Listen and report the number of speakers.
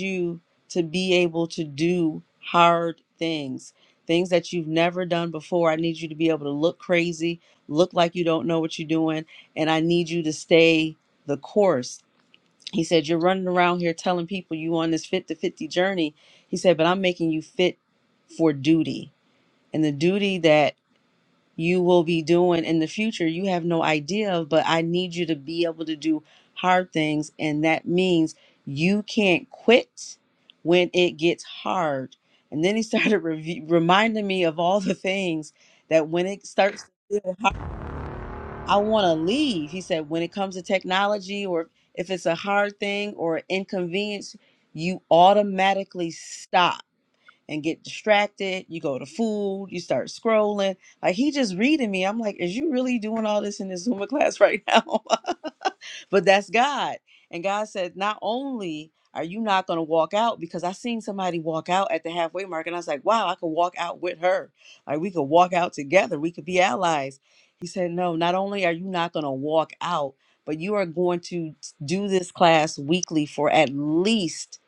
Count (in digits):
1